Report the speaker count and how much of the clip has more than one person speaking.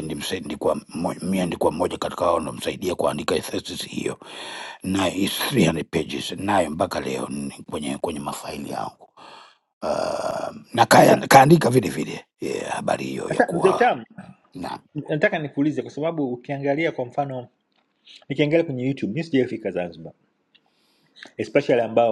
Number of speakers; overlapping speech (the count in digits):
2, about 3%